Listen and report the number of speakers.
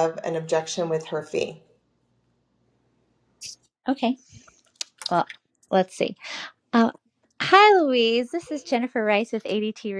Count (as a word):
two